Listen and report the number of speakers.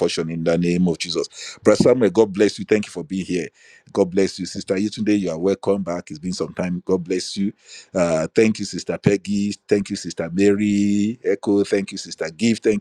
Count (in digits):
1